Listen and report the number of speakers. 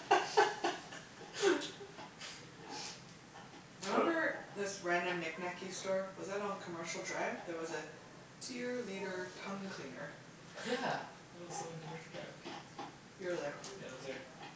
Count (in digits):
2